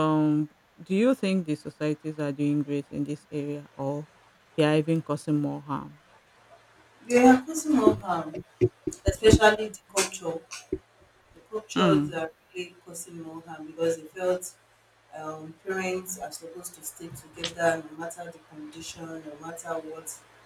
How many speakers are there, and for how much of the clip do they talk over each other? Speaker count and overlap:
2, about 2%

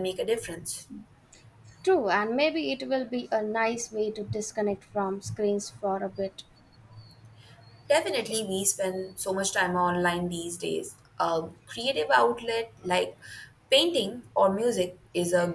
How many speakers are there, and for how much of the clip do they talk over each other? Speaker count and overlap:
2, no overlap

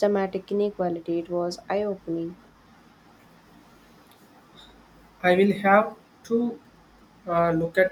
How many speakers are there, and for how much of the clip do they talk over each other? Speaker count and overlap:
2, no overlap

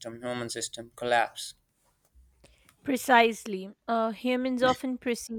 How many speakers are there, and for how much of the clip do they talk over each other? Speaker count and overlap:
2, no overlap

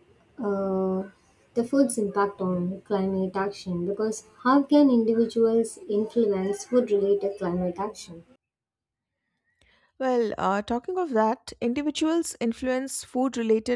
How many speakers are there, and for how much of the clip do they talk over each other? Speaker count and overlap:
2, no overlap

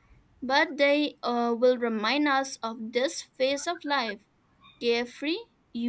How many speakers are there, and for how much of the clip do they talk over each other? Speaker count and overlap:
1, no overlap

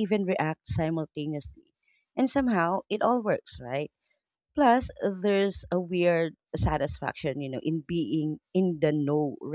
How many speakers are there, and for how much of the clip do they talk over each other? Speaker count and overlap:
1, no overlap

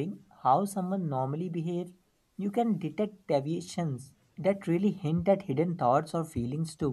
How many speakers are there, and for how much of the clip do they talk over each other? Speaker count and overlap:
1, no overlap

